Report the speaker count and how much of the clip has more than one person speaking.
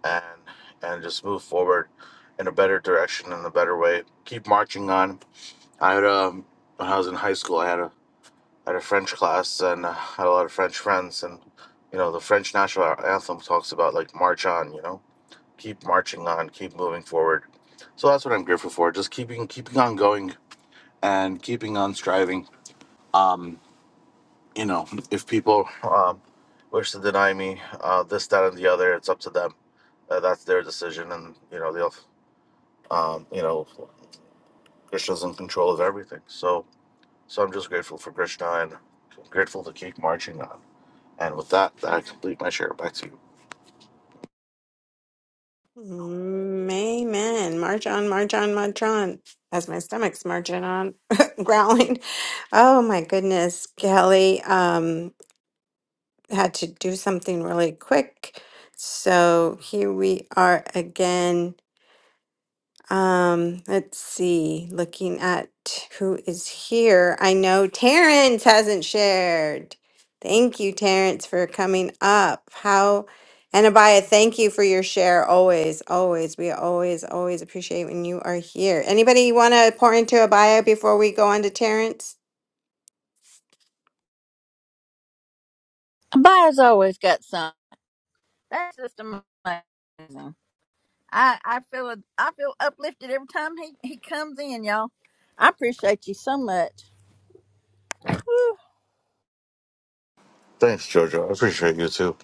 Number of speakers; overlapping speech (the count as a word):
three, no overlap